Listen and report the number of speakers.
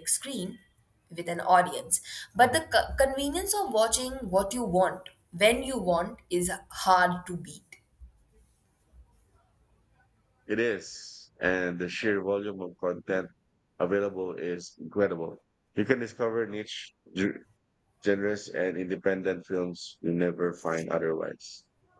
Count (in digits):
2